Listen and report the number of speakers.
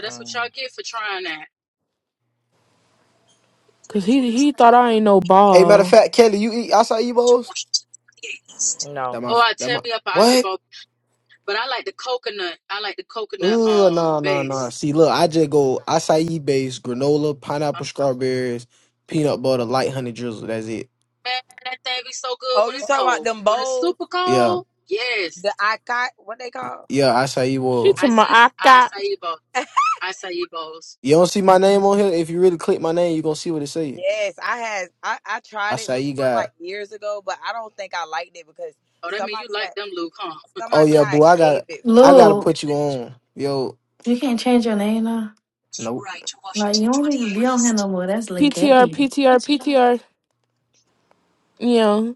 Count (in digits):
5